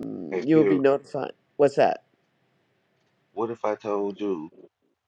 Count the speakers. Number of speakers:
2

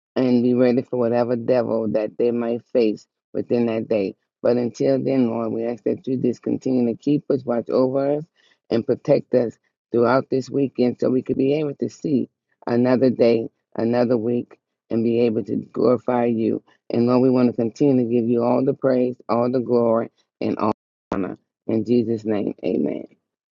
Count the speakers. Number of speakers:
1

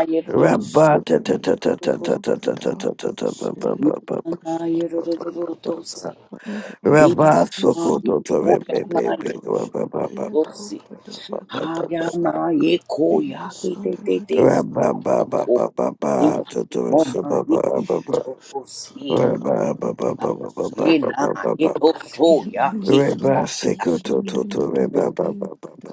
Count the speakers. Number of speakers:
3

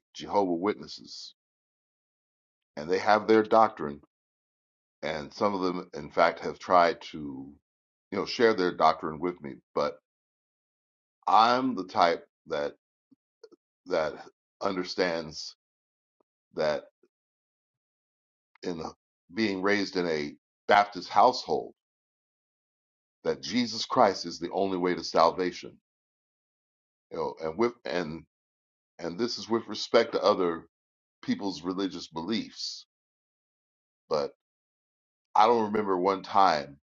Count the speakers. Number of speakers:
1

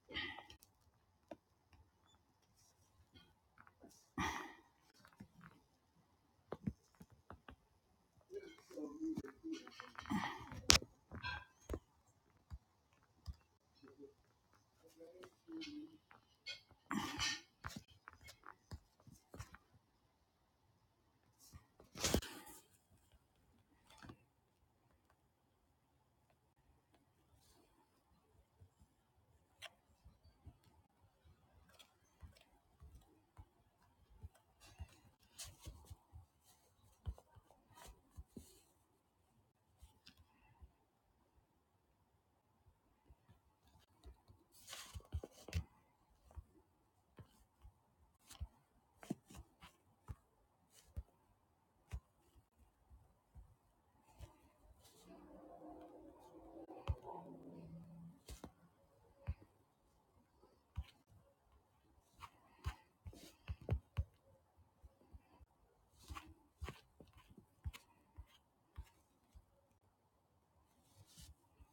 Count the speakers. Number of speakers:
0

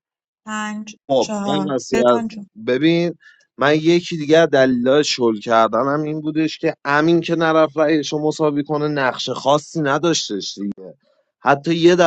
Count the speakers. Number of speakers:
2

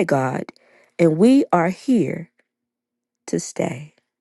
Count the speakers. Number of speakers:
1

